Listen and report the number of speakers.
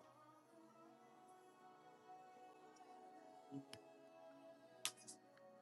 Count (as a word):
zero